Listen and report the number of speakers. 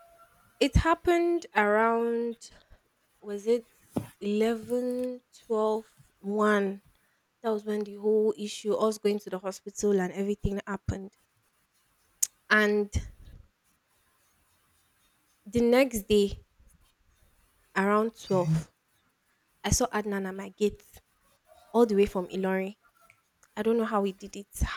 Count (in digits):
1